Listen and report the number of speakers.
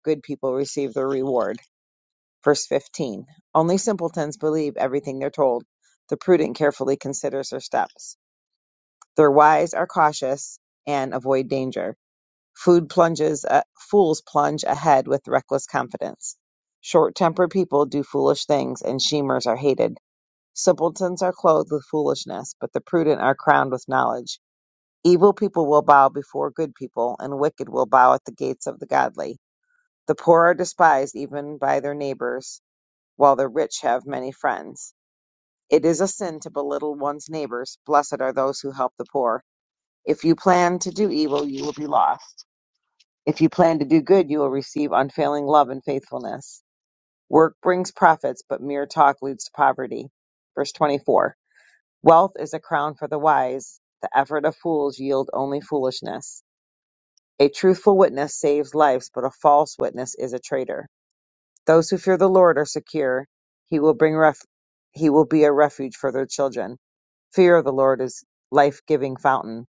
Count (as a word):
one